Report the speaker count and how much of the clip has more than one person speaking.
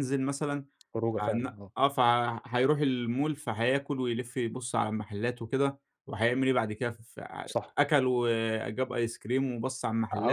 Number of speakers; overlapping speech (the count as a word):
two, about 7%